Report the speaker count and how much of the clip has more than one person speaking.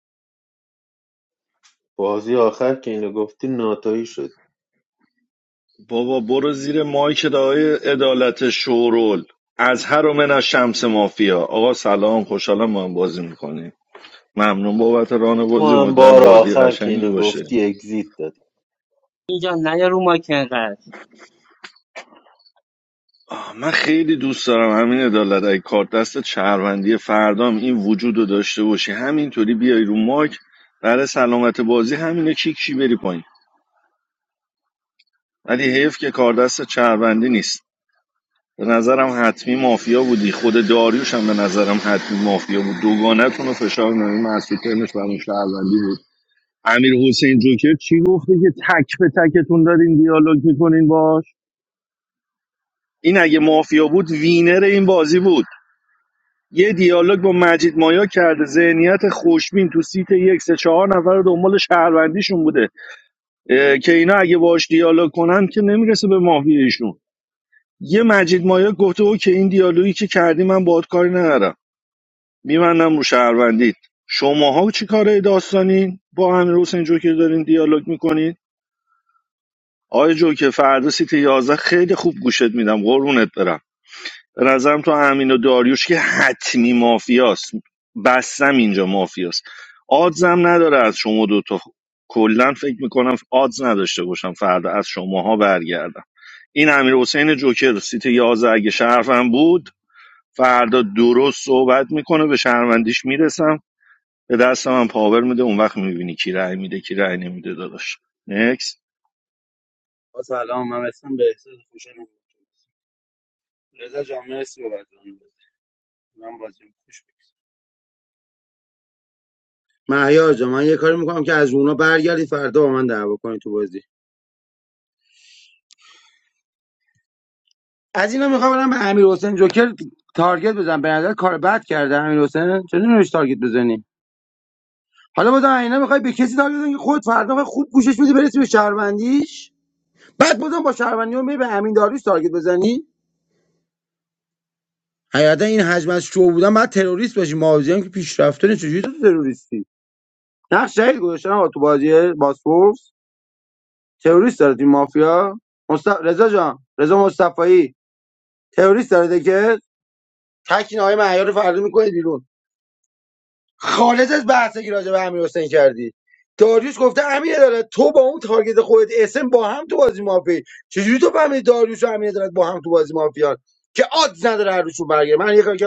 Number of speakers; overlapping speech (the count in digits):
4, about 1%